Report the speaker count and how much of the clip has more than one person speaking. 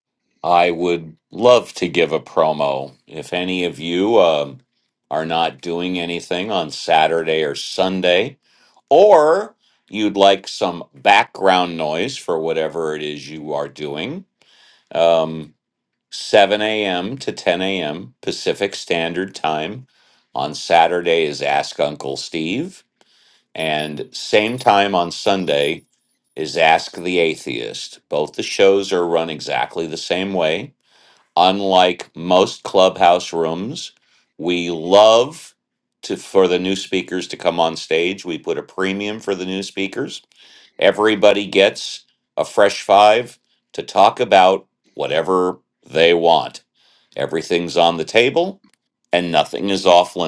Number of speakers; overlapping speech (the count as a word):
one, no overlap